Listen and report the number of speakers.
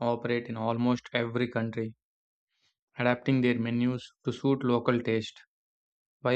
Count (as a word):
one